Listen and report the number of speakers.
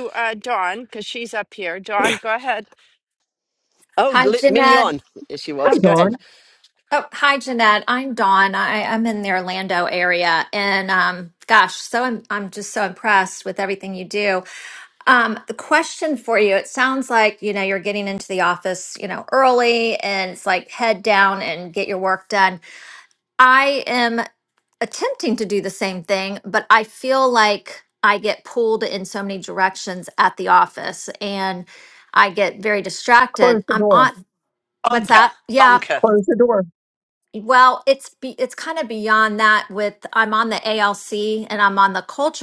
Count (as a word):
four